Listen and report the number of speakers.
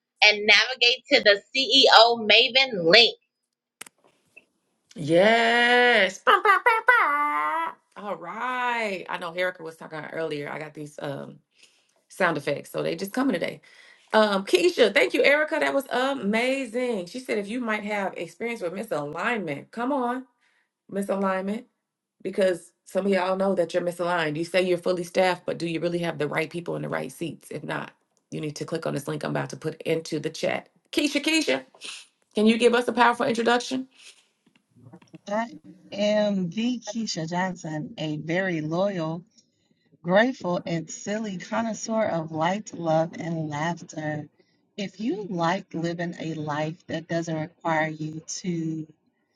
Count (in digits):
3